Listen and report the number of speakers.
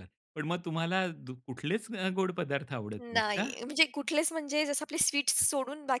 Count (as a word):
two